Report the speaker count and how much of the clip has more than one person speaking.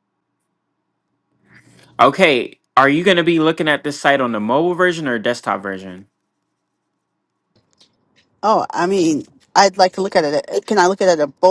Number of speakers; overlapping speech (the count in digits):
2, no overlap